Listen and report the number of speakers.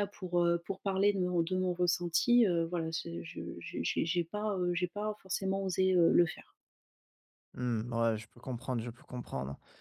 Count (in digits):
2